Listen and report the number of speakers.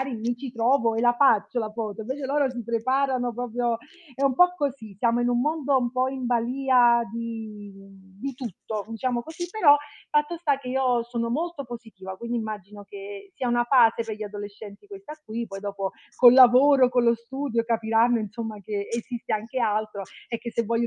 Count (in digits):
1